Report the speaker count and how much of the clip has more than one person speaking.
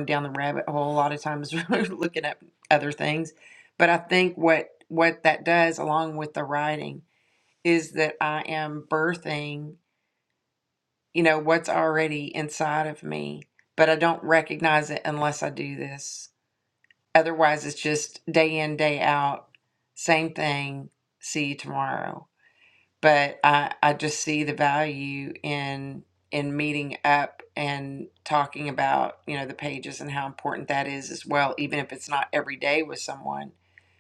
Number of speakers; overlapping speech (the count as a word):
one, no overlap